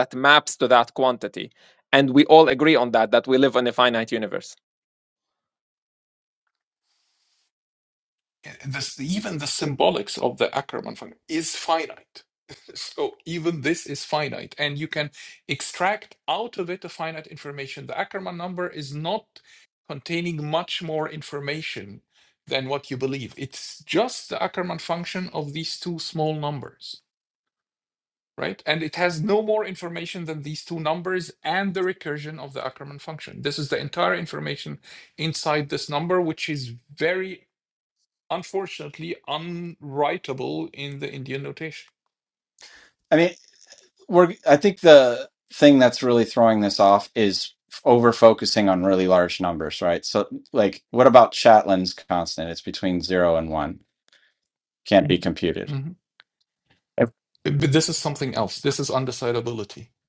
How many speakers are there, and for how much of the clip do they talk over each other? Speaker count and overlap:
three, no overlap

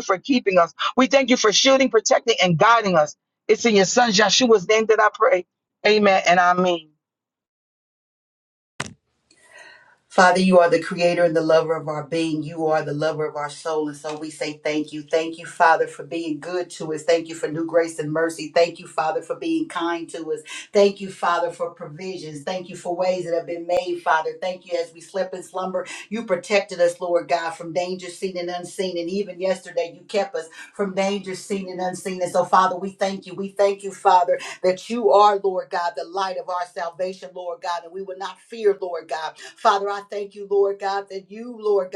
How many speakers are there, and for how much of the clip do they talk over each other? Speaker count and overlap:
two, no overlap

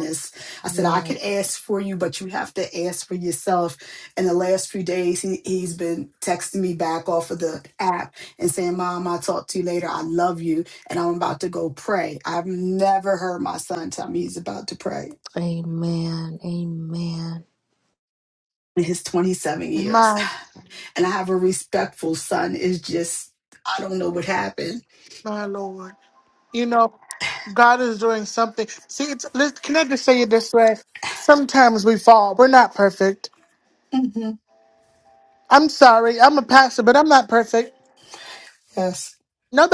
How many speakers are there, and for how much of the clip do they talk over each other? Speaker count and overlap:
three, about 2%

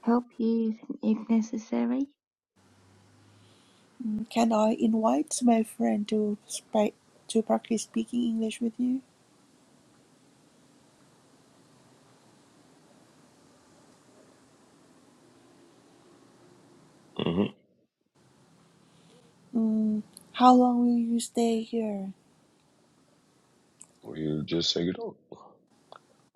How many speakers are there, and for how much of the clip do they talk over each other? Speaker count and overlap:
three, no overlap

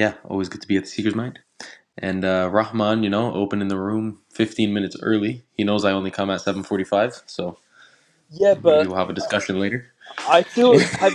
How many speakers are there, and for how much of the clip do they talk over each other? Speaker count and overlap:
two, about 3%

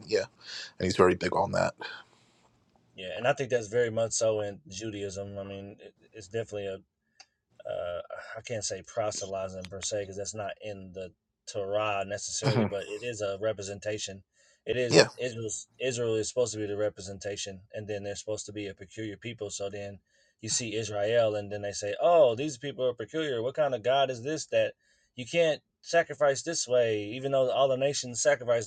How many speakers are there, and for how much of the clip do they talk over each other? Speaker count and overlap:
two, about 2%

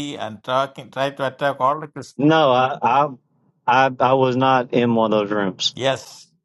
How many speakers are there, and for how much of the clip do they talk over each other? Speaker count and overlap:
two, no overlap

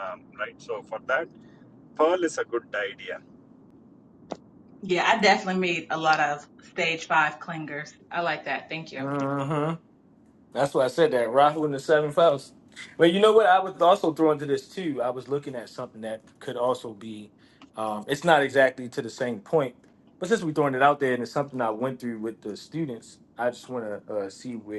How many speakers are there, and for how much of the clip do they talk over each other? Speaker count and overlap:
three, under 1%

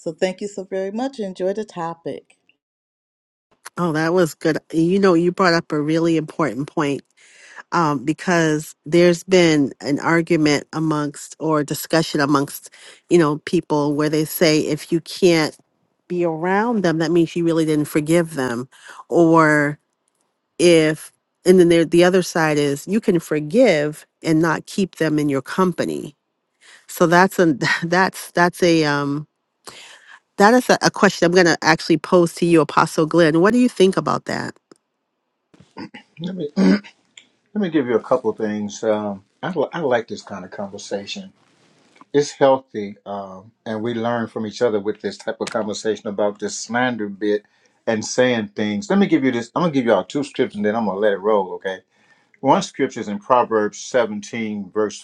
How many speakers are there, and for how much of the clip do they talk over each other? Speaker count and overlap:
three, no overlap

